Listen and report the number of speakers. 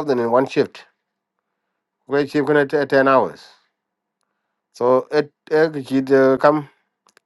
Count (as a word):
one